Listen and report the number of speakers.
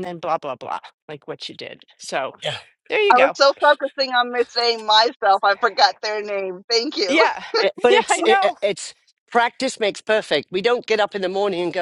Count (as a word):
three